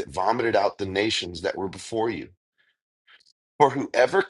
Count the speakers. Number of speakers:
one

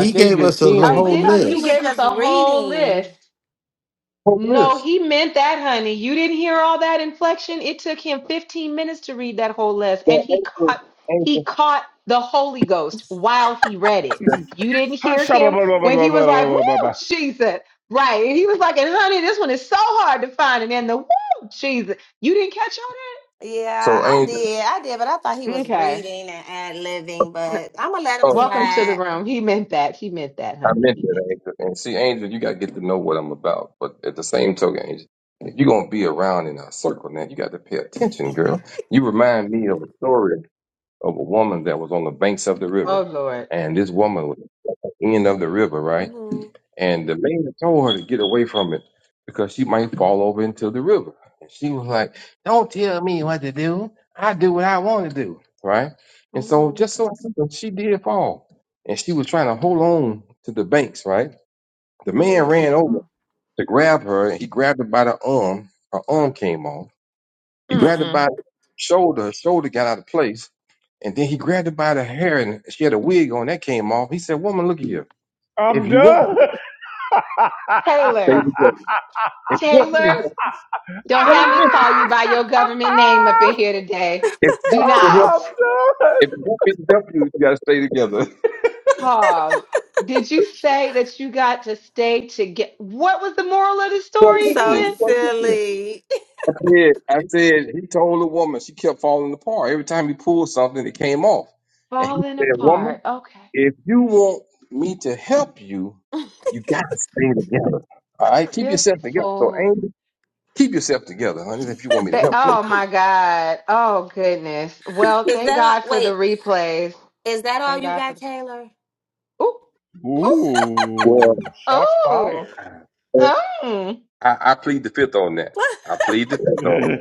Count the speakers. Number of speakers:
five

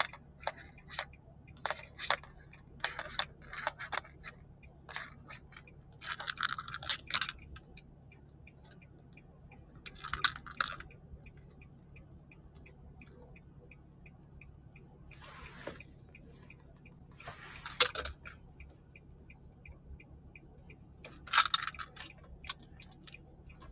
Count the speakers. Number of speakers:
zero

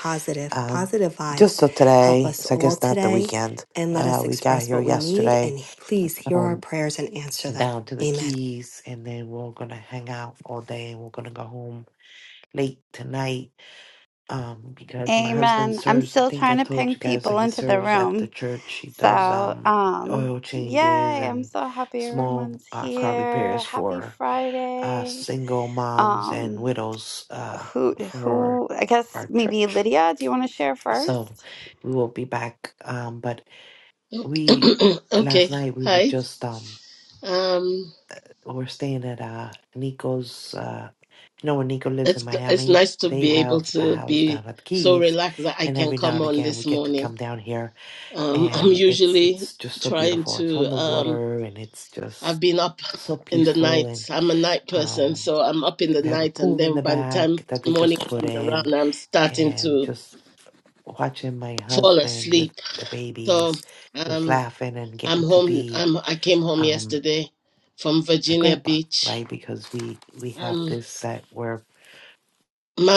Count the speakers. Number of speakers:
four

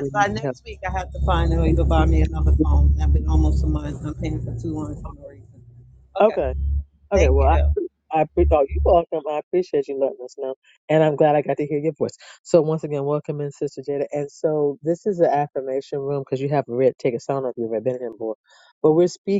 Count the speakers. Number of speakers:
two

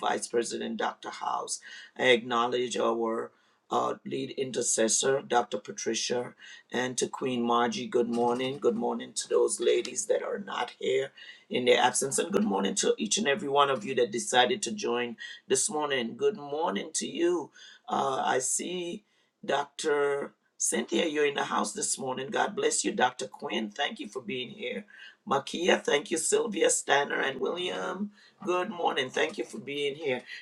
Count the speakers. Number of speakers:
one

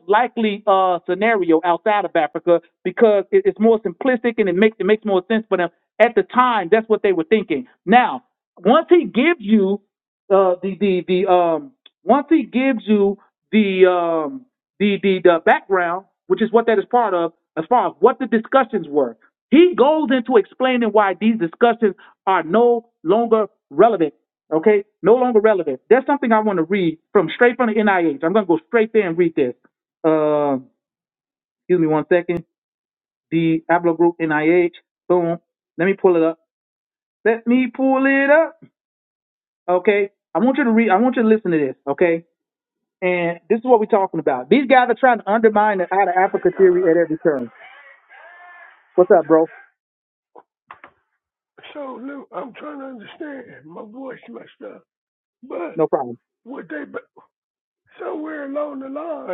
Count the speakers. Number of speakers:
two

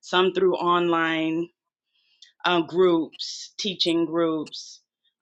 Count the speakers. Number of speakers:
one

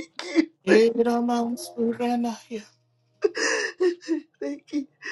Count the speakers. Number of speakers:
two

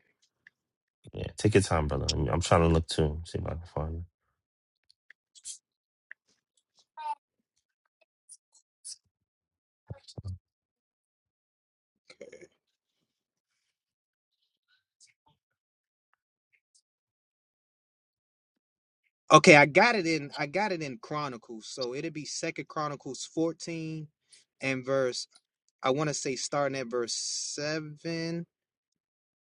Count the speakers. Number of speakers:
two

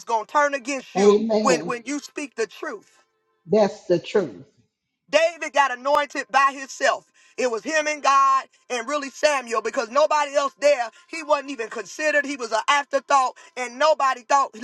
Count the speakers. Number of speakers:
two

